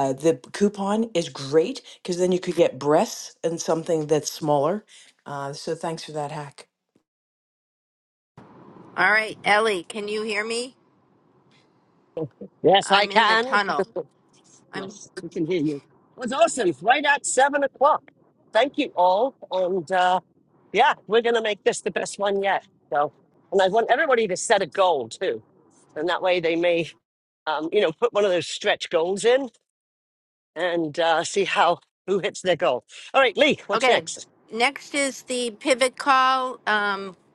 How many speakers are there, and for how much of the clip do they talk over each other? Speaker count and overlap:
3, about 3%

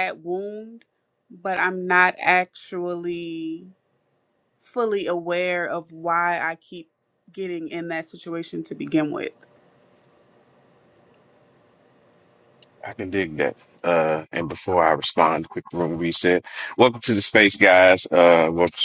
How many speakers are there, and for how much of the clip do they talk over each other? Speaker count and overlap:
2, no overlap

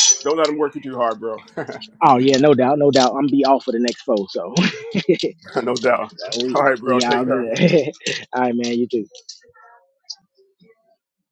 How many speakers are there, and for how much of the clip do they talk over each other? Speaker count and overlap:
2, about 8%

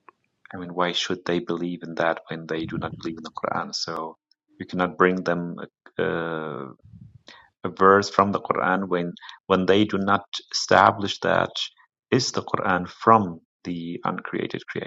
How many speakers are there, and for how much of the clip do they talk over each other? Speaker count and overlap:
1, no overlap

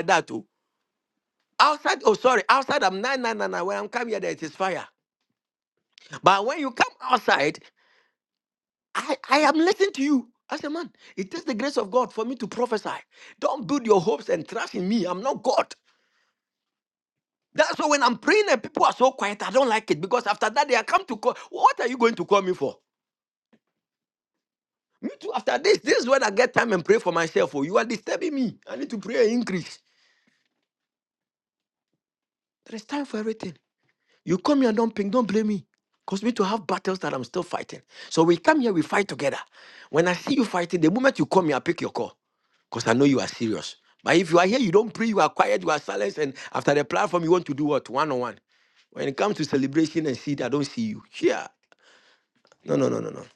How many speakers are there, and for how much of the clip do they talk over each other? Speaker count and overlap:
1, no overlap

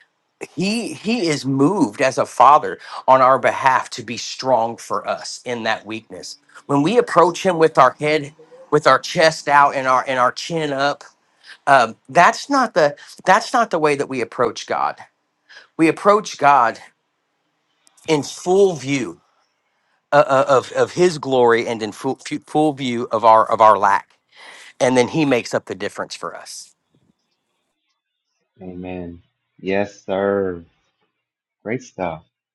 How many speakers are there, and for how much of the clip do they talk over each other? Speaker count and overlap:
2, no overlap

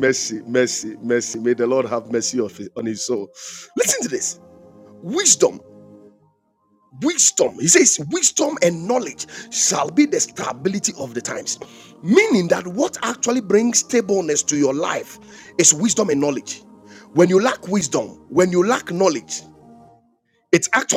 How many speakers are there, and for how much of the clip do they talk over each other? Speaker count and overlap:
1, no overlap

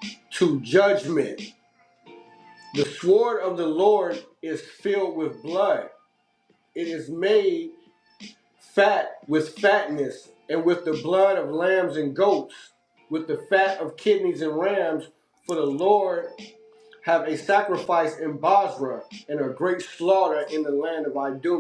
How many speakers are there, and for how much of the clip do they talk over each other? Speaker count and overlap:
1, no overlap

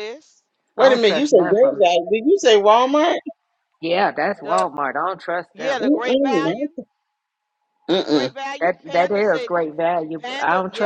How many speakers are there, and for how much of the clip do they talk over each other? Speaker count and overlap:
3, about 38%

